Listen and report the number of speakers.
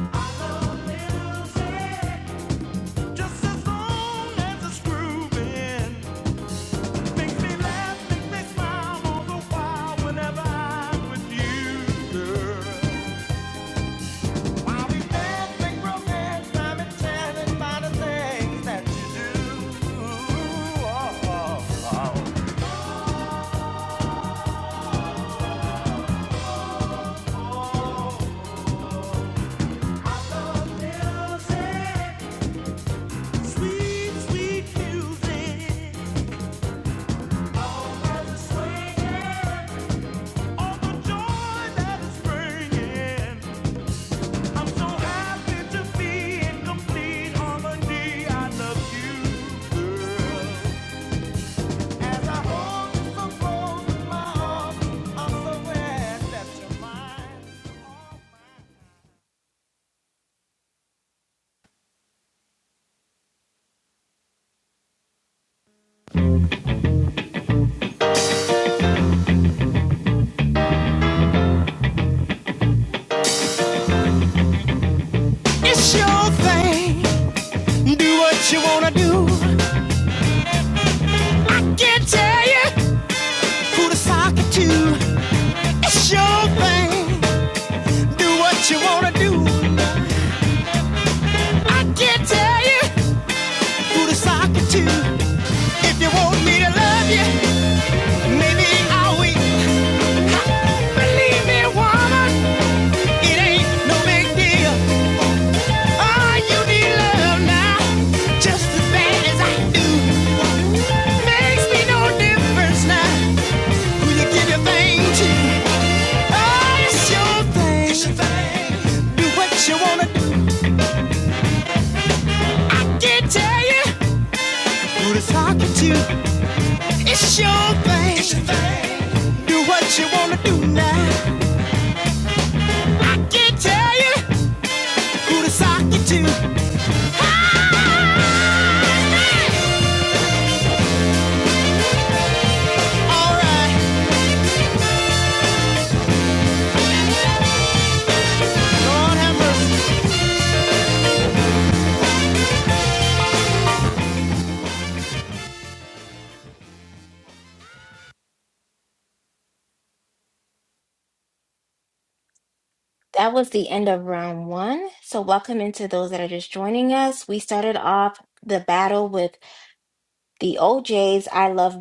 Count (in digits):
3